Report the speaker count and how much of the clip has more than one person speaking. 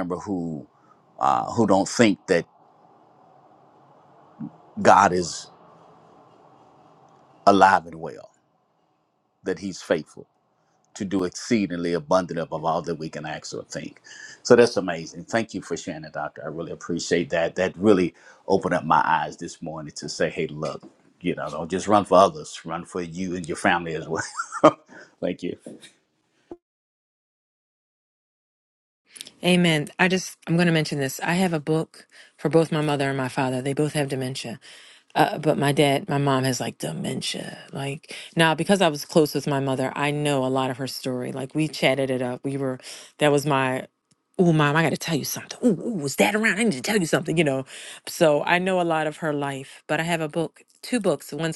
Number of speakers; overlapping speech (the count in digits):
2, no overlap